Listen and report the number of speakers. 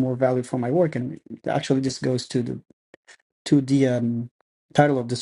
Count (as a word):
one